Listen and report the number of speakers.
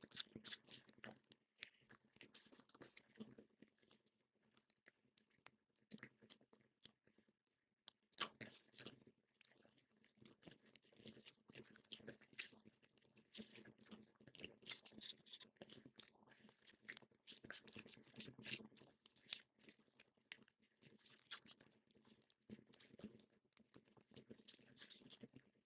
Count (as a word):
zero